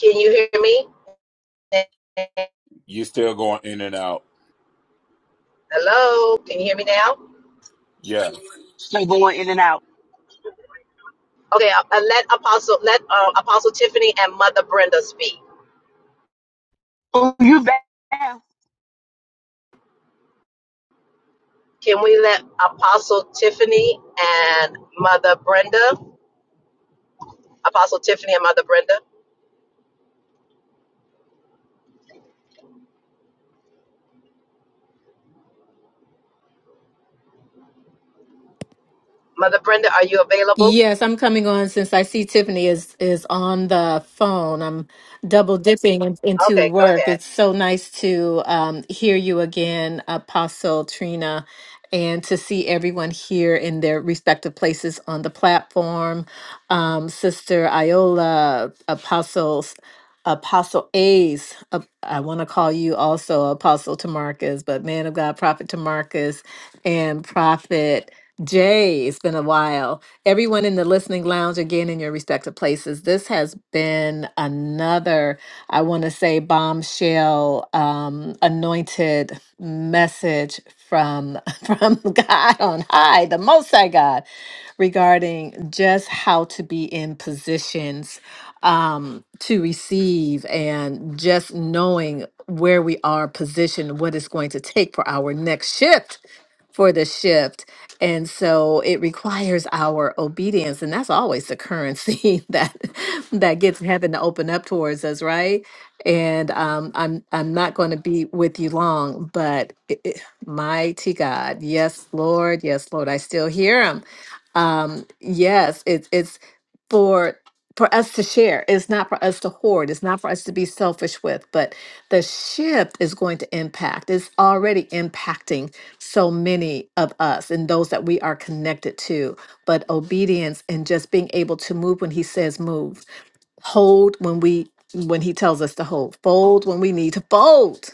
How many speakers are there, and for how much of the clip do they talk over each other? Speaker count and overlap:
four, about 1%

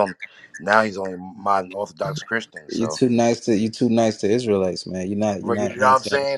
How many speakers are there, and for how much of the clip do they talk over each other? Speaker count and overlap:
two, about 18%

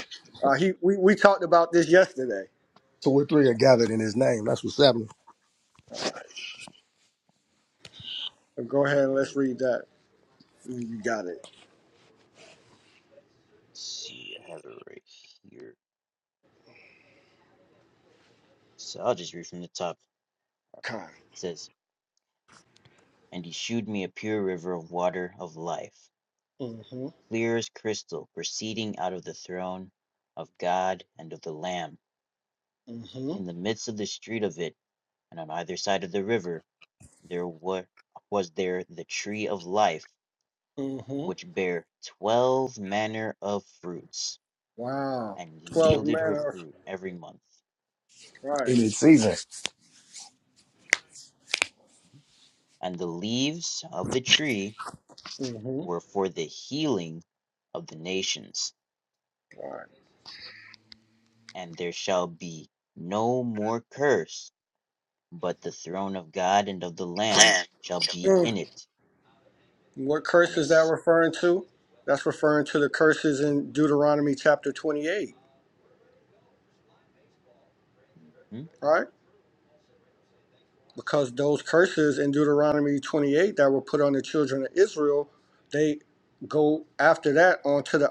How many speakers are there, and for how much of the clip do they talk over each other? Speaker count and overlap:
three, about 3%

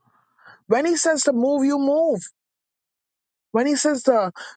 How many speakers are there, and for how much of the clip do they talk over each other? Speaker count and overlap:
one, no overlap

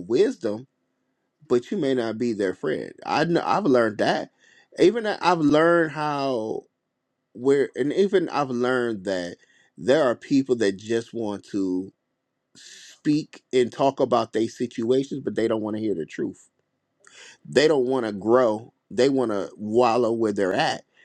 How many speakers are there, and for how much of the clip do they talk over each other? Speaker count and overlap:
one, no overlap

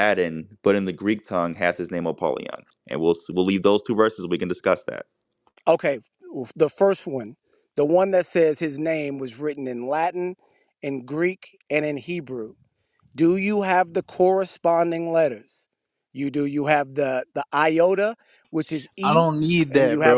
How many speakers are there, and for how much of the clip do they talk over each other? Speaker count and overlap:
three, about 3%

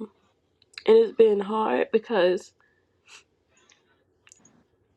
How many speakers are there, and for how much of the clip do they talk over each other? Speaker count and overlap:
one, no overlap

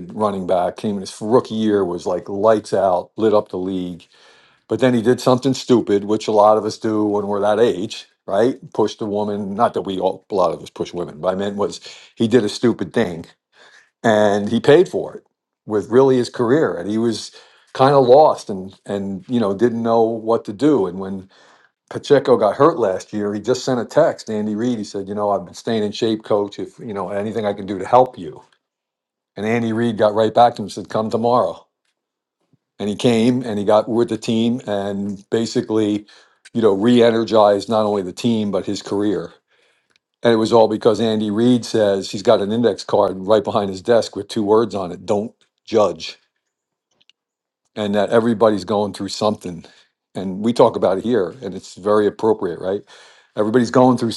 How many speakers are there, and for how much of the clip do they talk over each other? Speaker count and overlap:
one, no overlap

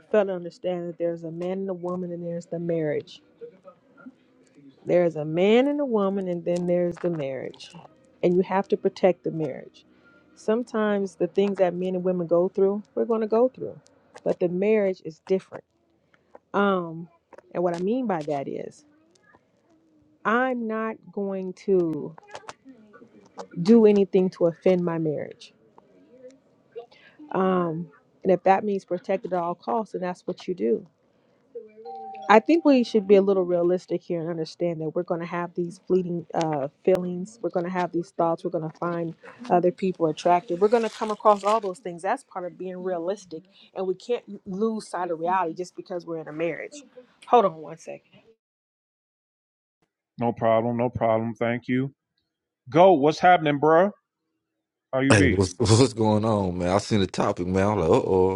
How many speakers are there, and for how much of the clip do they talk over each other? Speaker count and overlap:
three, under 1%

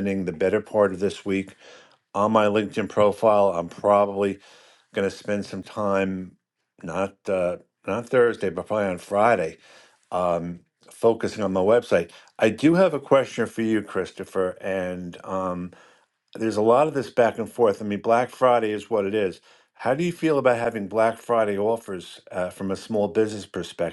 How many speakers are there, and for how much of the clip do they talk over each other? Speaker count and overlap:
one, no overlap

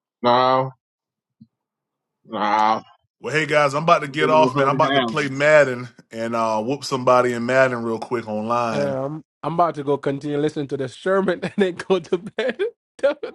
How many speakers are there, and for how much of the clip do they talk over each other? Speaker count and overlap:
three, about 10%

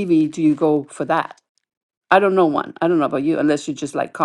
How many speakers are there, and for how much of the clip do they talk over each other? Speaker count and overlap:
one, no overlap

